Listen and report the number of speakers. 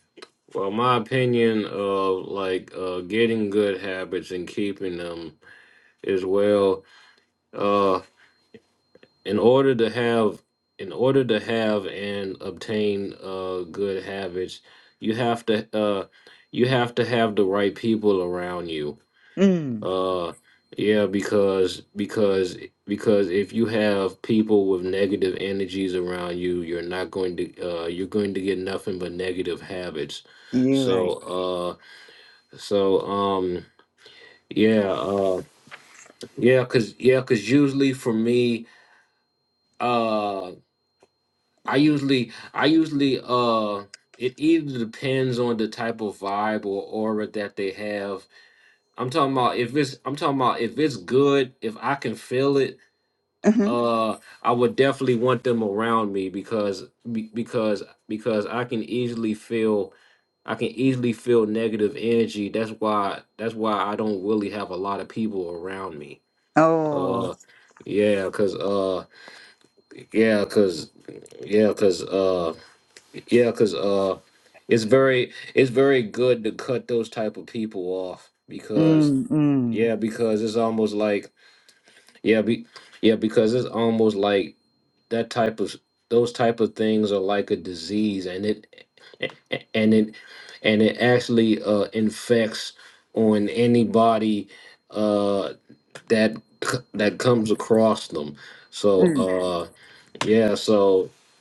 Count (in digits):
2